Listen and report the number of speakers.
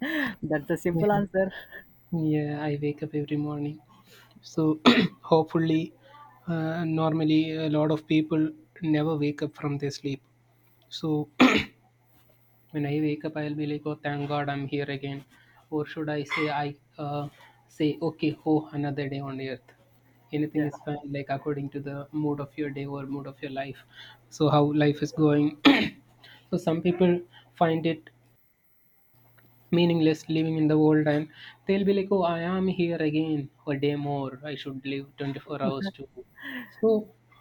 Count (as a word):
two